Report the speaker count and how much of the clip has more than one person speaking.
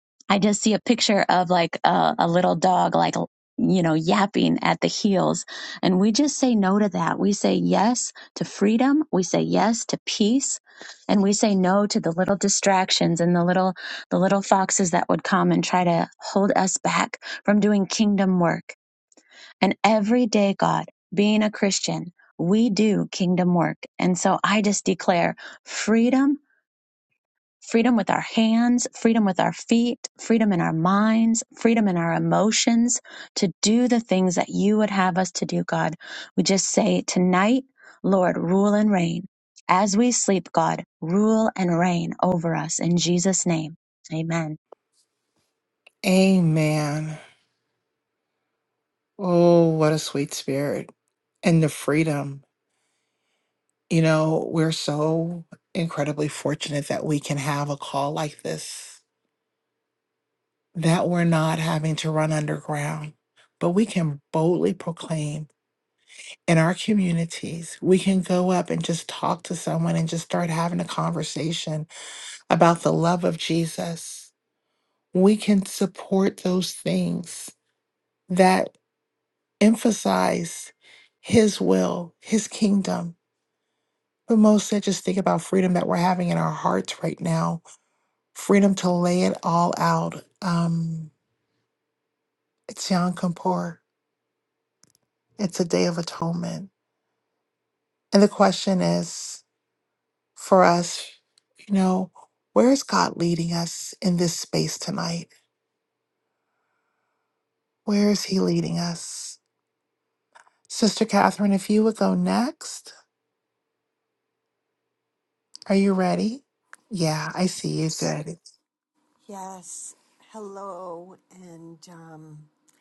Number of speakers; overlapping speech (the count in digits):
3, no overlap